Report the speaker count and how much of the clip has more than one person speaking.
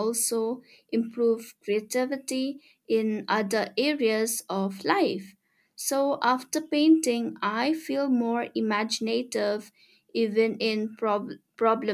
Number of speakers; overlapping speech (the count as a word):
one, no overlap